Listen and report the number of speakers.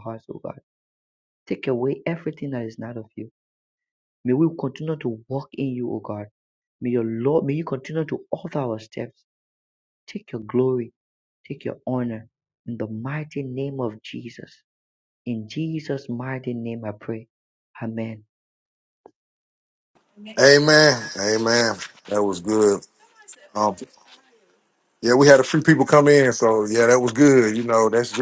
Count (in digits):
2